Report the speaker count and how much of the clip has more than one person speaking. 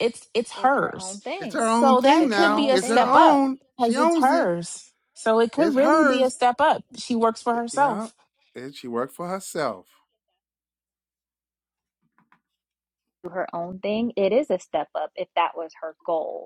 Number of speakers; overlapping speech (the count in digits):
3, about 24%